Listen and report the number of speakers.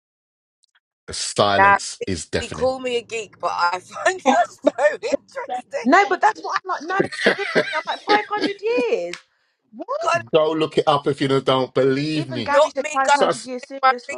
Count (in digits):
3